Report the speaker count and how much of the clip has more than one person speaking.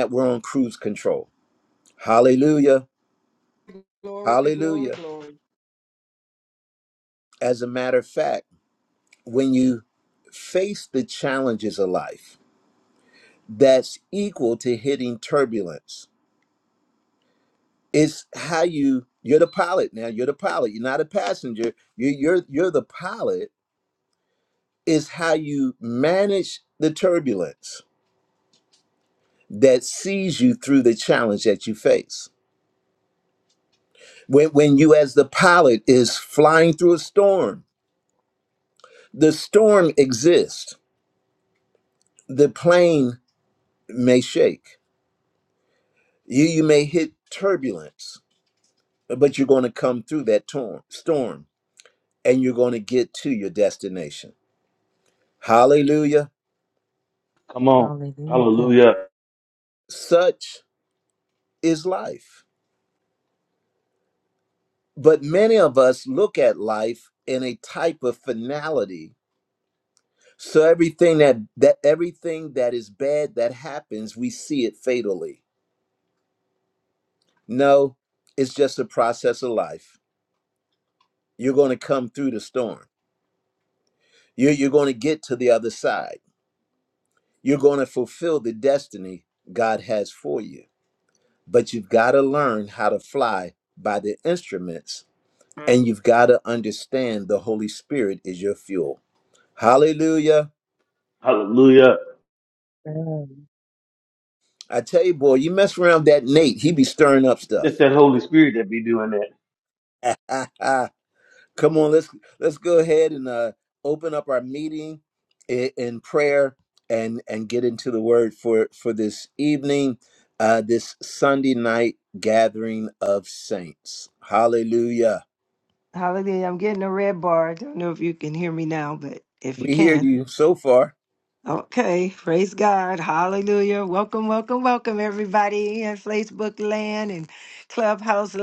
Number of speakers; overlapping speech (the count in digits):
5, about 1%